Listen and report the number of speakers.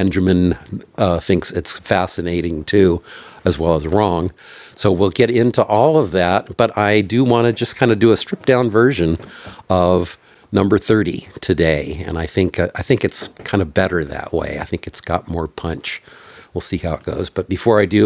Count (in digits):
1